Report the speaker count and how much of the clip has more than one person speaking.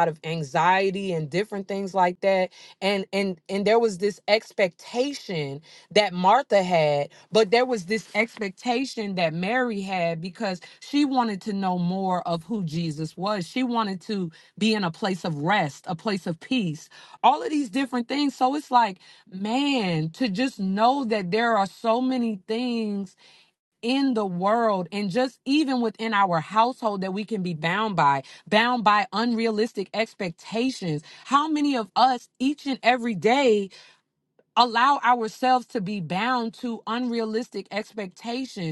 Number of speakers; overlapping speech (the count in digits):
1, no overlap